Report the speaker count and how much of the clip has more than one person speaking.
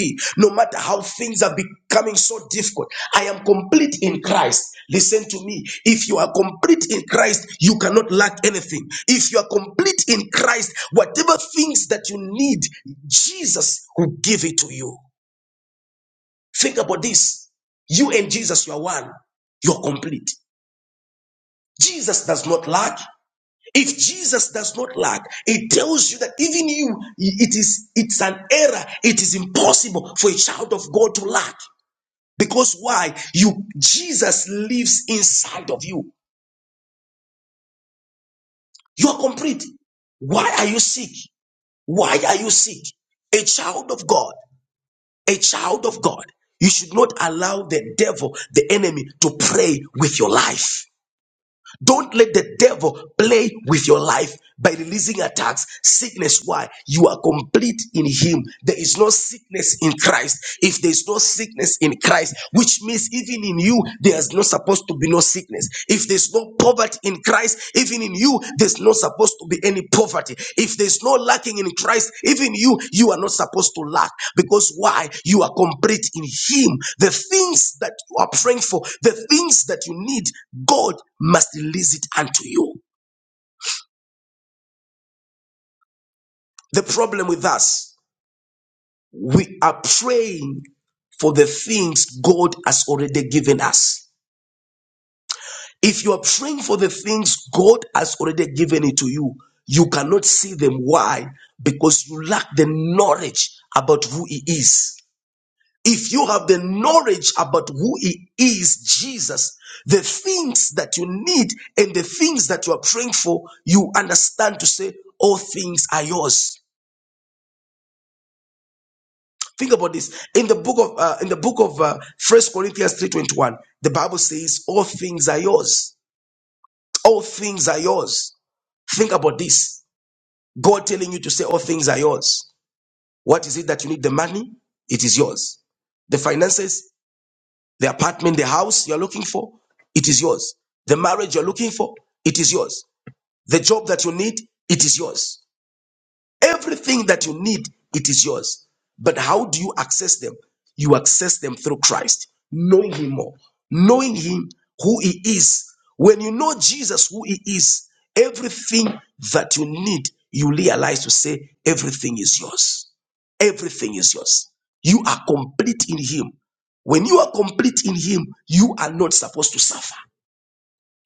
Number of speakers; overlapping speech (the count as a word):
one, no overlap